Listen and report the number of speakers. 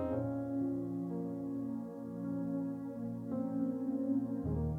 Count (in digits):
0